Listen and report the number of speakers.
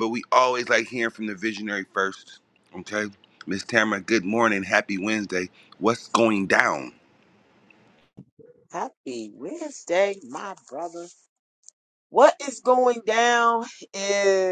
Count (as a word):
two